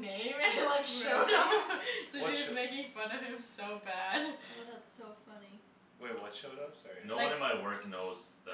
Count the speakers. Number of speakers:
4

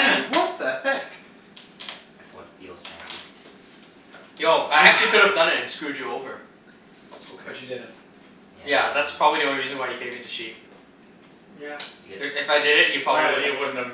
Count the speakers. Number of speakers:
4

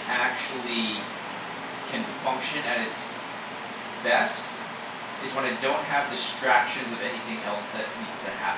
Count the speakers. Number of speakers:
1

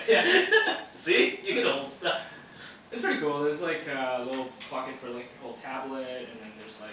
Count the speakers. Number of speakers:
2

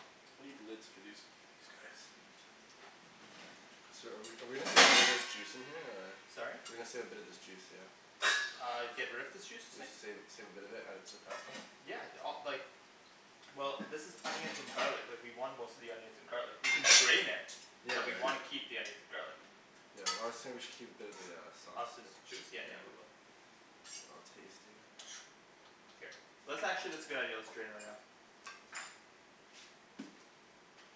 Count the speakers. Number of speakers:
3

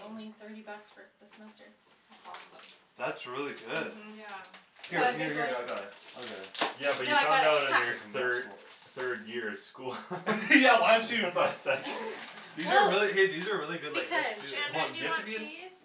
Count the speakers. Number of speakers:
4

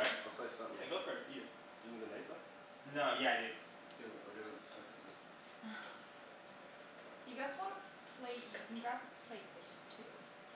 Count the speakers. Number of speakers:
3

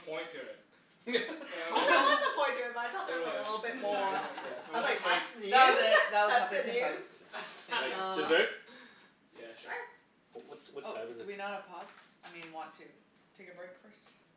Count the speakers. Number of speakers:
4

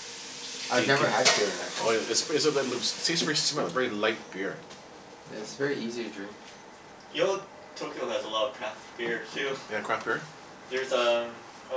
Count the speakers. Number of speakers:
3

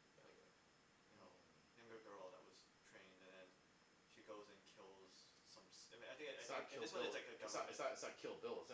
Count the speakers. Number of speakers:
2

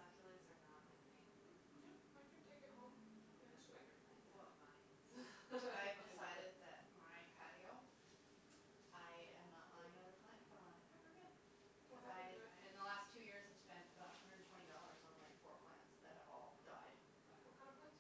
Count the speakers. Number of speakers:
3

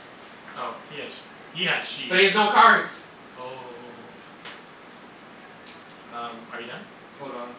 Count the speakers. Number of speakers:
2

